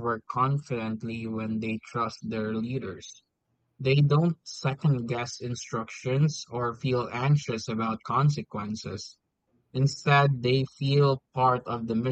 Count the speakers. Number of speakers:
one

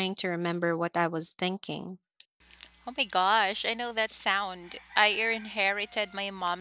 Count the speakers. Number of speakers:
two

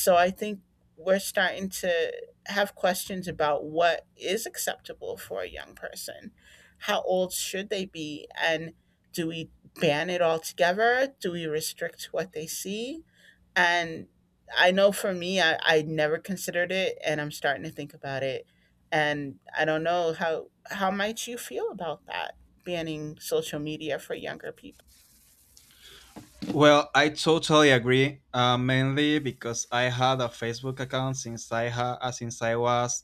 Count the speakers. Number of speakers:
two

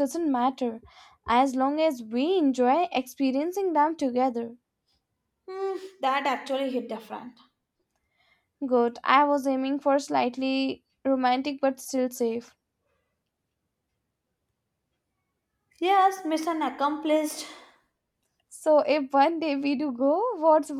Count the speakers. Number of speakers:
two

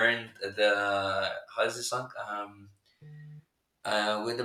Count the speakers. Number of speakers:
one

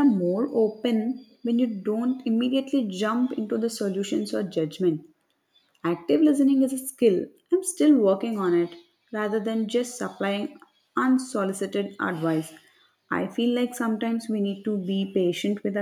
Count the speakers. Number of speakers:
one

